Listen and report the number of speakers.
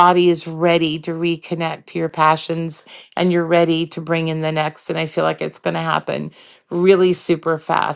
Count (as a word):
one